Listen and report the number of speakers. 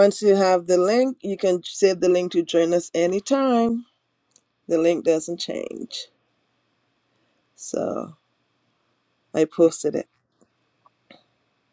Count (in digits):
1